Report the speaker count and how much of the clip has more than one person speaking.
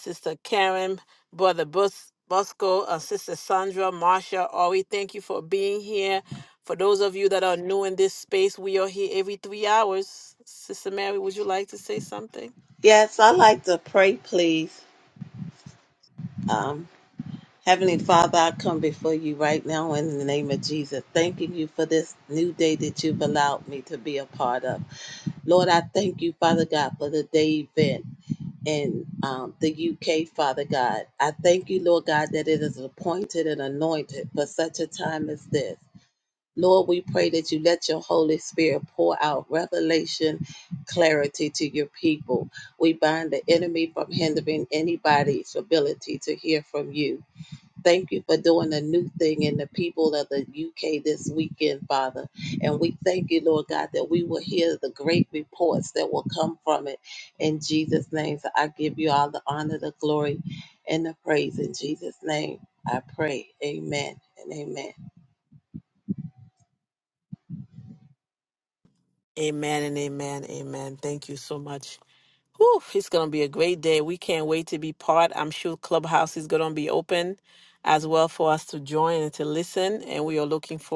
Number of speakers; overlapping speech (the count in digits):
2, no overlap